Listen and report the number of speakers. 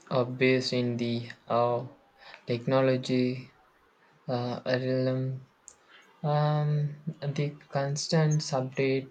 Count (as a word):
one